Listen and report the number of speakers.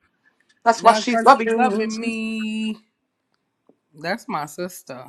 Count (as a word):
two